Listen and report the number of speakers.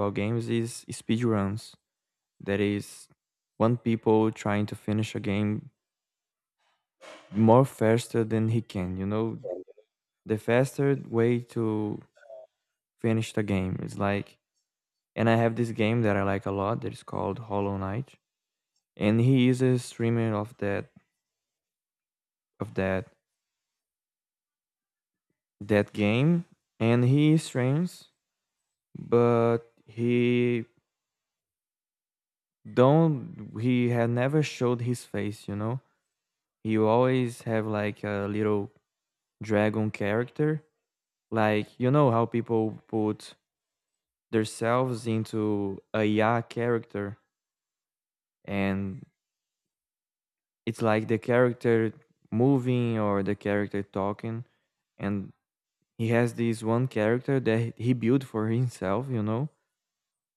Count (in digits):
1